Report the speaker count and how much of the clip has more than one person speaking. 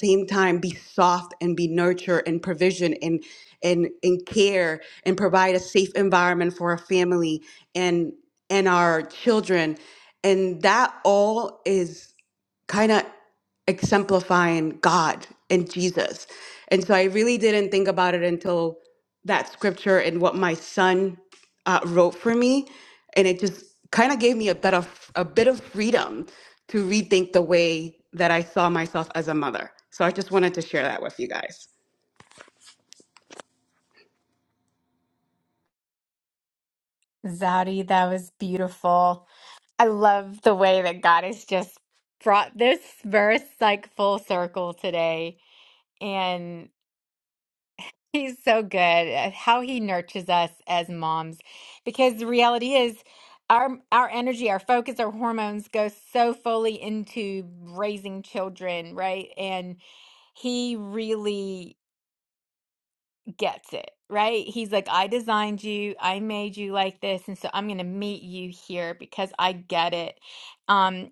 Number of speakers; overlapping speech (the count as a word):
two, no overlap